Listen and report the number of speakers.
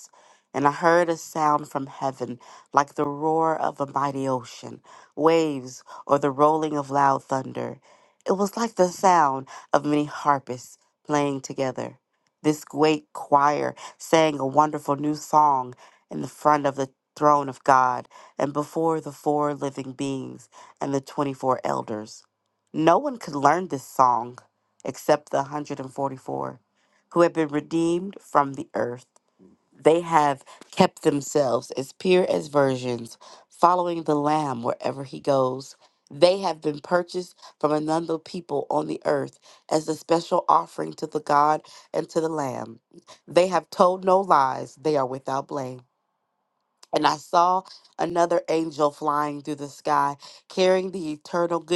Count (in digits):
1